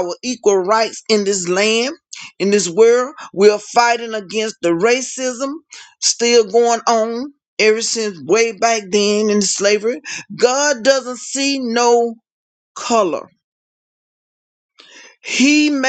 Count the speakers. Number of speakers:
one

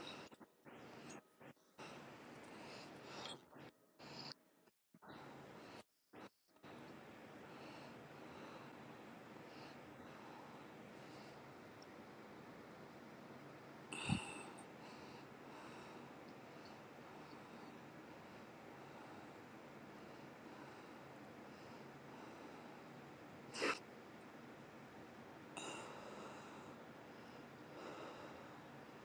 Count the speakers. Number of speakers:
zero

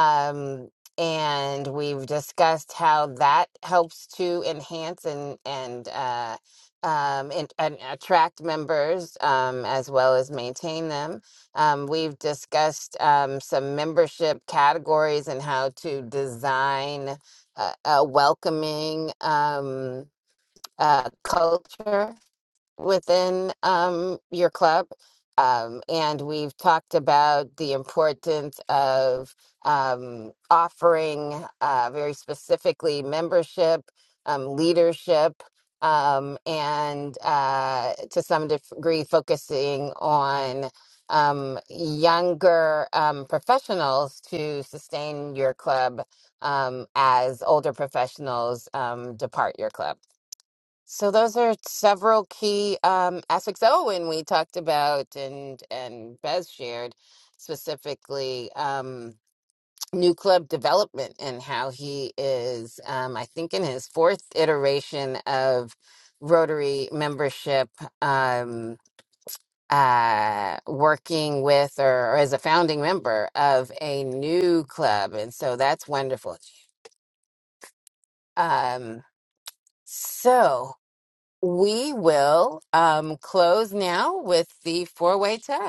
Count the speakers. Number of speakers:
one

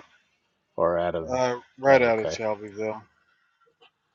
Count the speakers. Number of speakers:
two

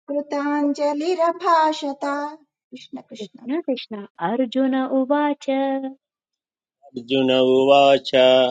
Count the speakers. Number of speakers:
three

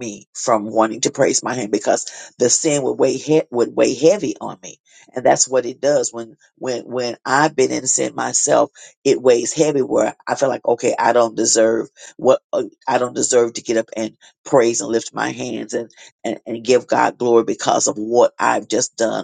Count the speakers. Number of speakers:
one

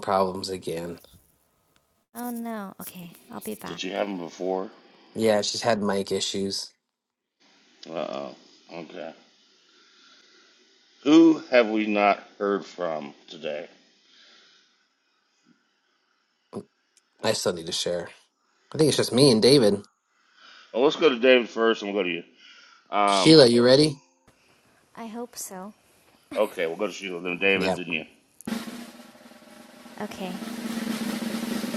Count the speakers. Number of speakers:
three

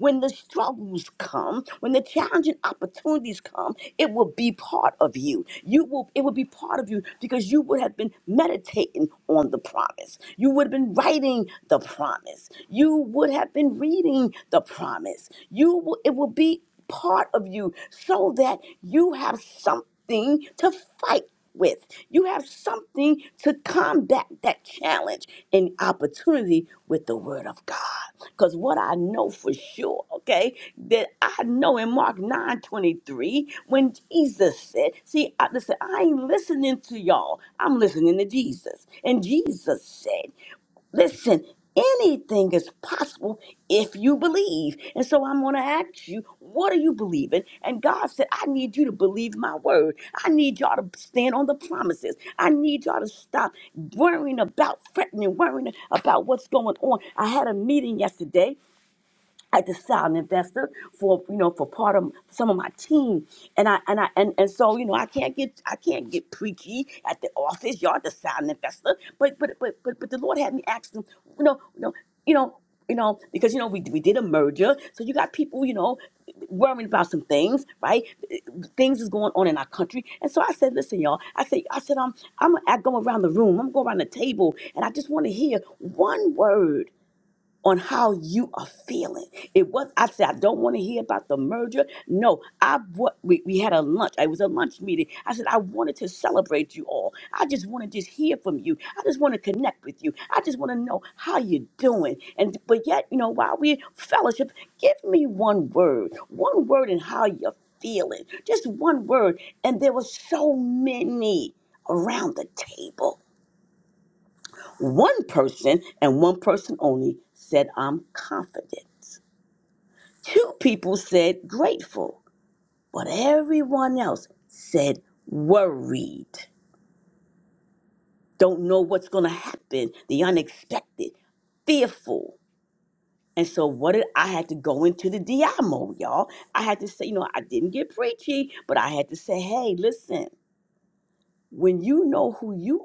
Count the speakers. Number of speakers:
one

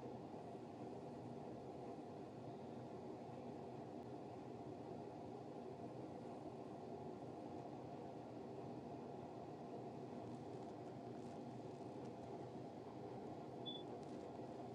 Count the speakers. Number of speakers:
zero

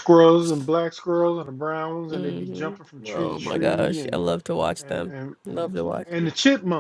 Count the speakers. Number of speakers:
two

